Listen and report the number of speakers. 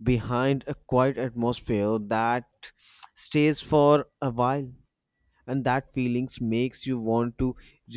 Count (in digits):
1